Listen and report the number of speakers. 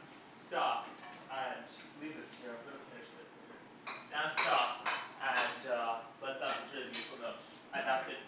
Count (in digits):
1